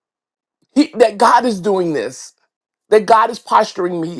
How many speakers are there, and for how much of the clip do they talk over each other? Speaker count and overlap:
1, no overlap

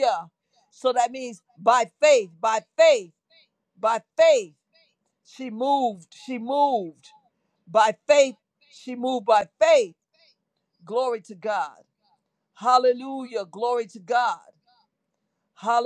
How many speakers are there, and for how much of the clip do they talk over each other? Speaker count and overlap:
1, no overlap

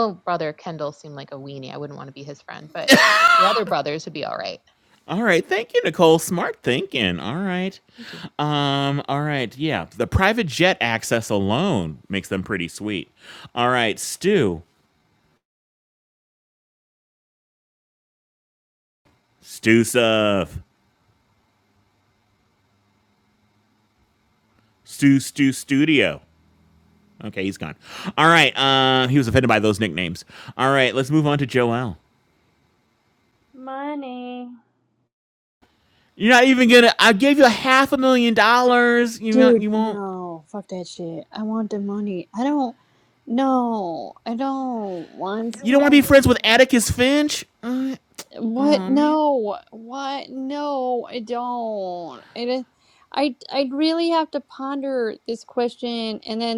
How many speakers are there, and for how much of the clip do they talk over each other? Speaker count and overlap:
3, about 3%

